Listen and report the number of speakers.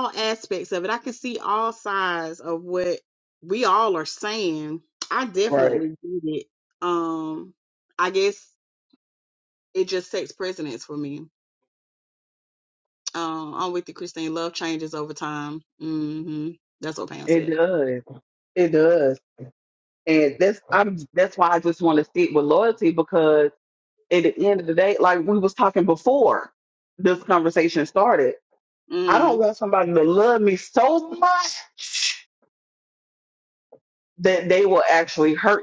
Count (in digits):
2